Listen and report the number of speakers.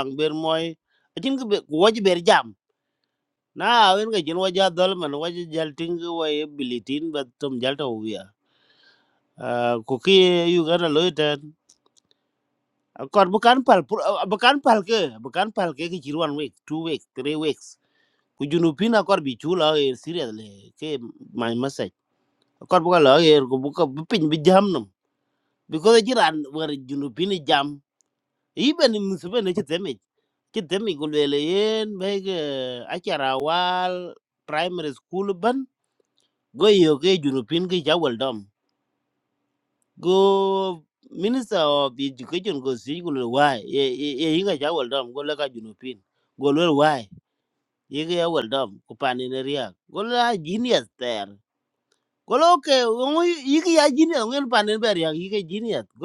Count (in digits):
1